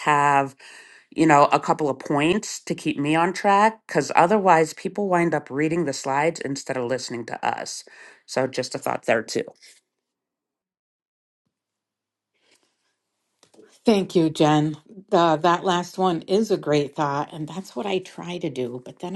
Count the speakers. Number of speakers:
2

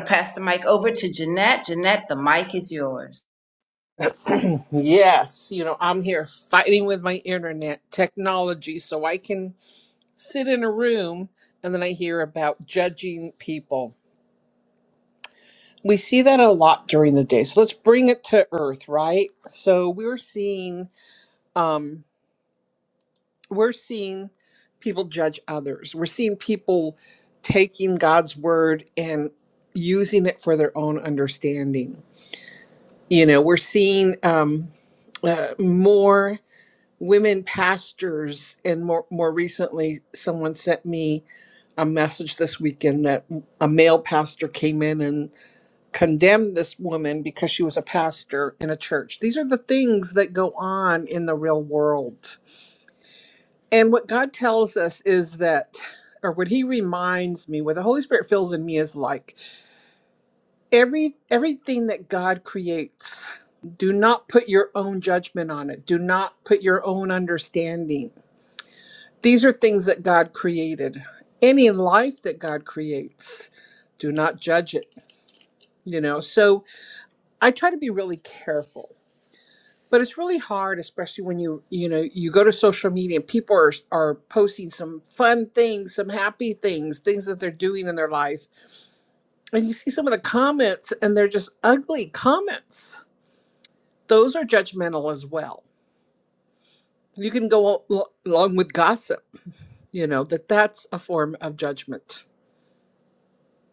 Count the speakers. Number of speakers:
2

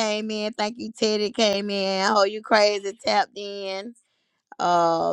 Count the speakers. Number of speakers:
1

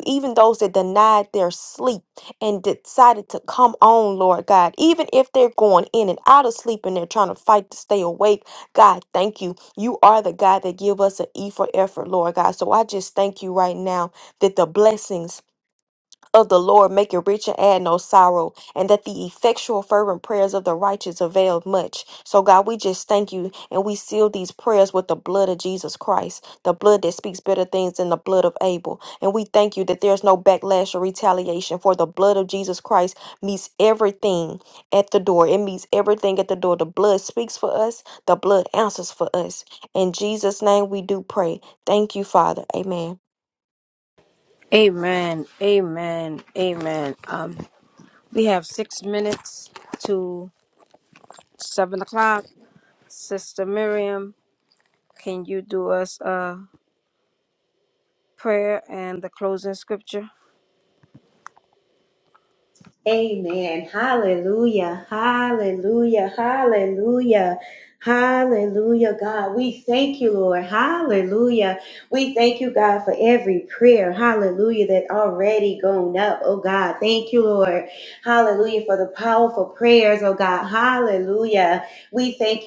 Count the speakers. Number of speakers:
3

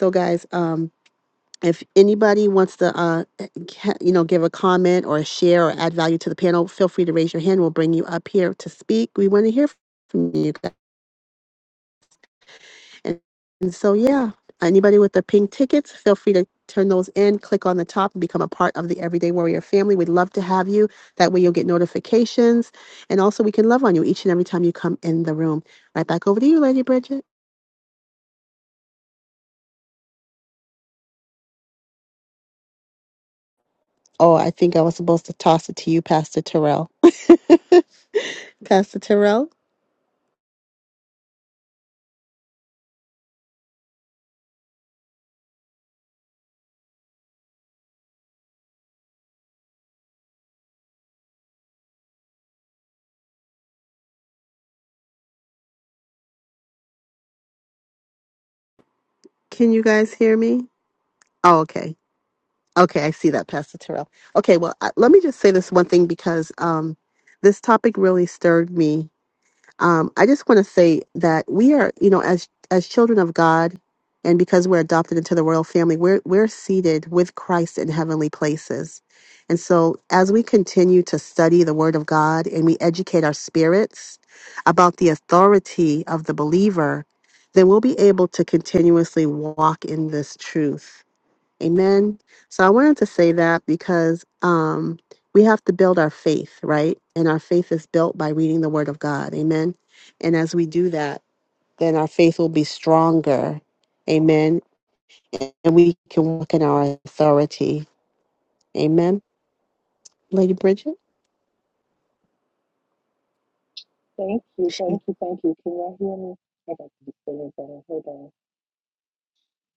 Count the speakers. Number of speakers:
2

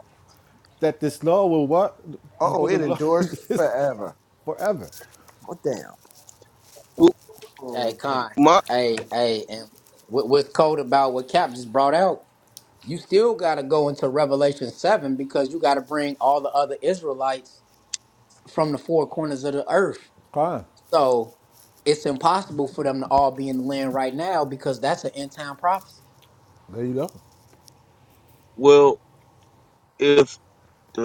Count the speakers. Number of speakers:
4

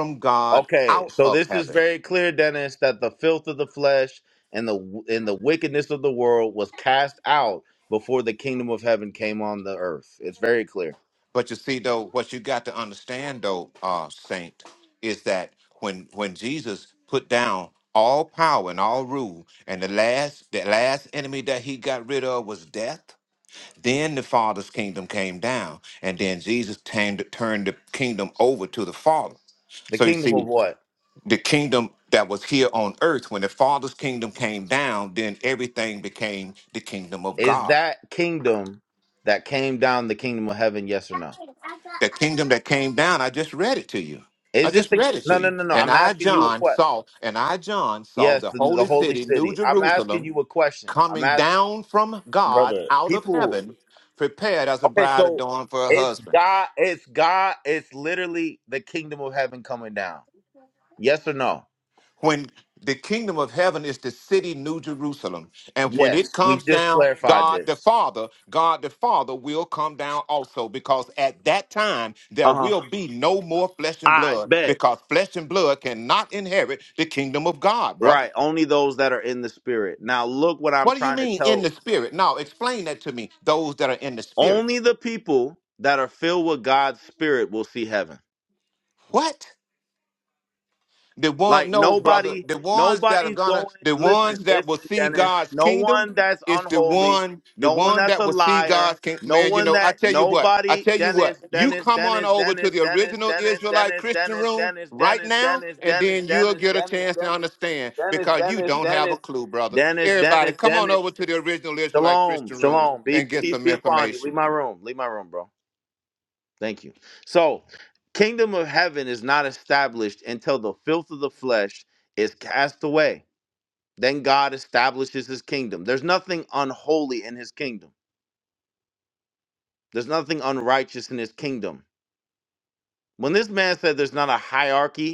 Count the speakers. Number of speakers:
2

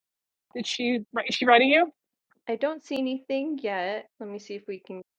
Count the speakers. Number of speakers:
2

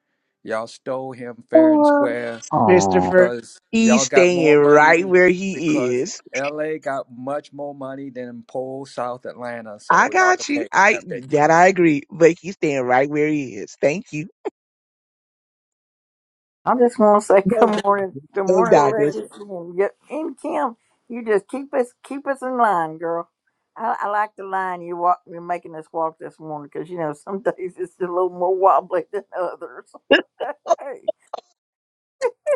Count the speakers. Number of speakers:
3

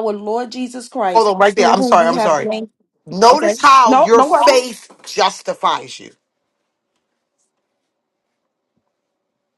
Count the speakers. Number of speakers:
2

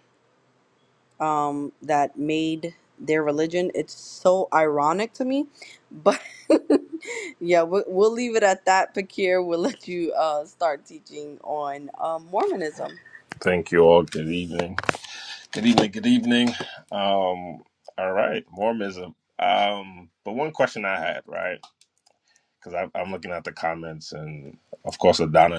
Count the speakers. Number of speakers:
2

